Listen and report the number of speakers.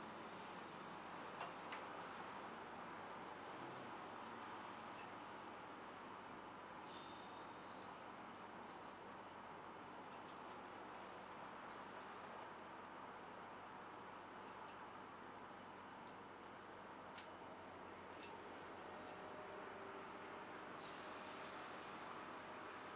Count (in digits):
0